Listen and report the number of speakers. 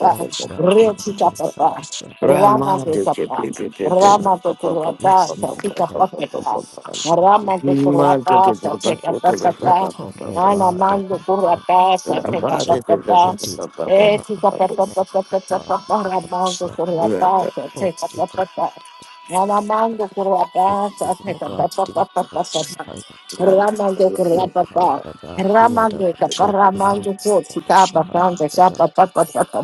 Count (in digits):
3